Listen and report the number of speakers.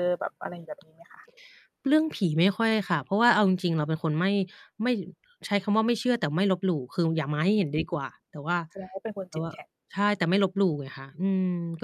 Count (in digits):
2